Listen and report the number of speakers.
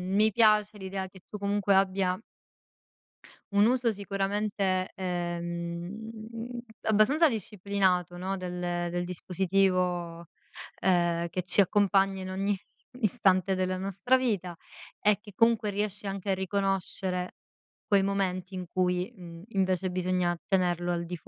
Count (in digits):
1